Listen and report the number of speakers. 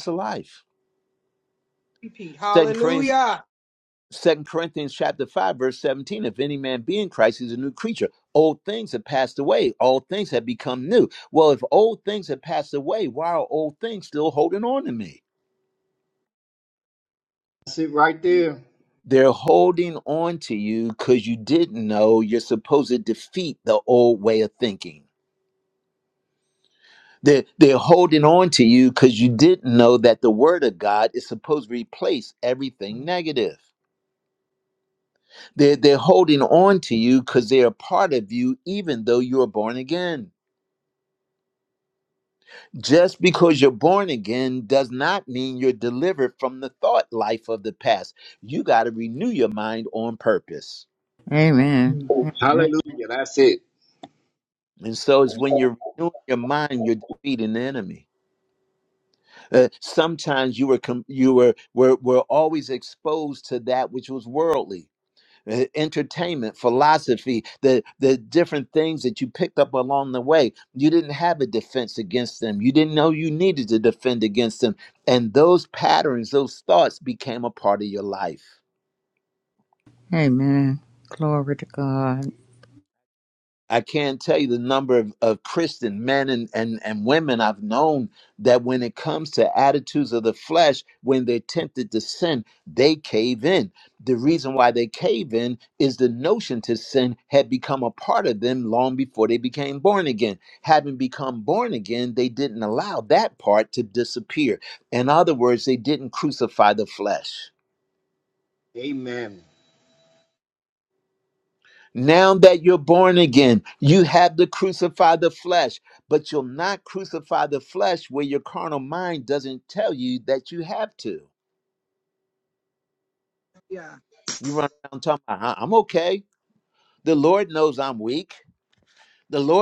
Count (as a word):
four